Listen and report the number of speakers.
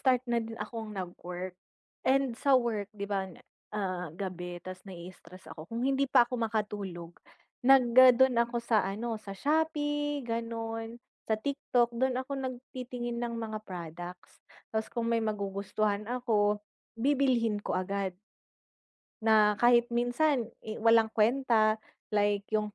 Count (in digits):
1